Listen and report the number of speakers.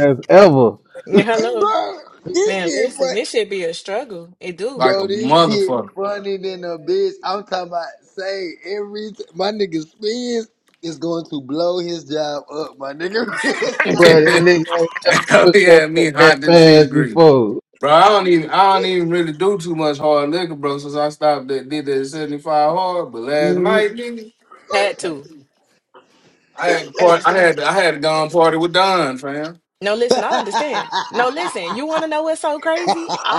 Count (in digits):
4